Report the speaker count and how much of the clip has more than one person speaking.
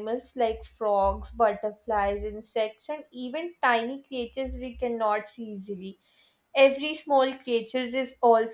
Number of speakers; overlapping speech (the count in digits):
1, no overlap